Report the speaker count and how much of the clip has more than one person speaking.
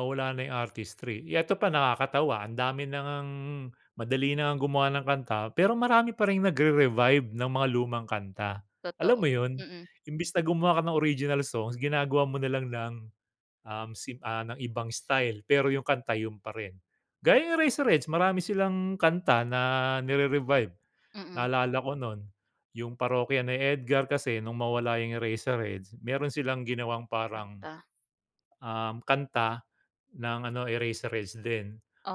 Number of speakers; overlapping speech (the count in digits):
2, about 1%